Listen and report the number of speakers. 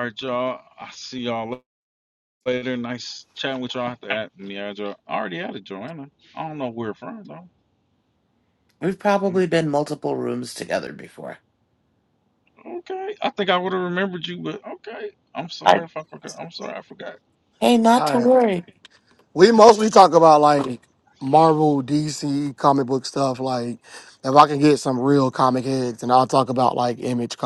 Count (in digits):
3